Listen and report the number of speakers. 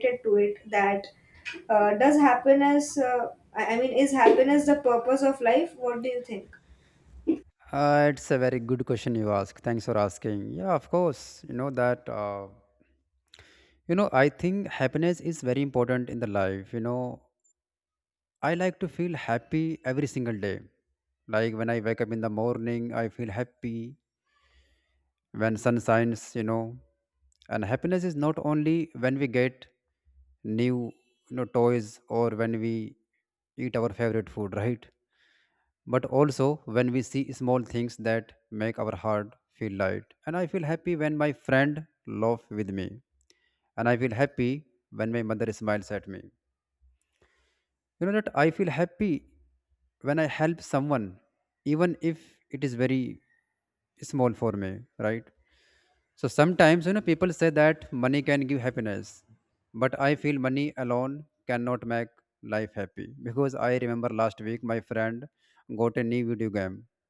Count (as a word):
two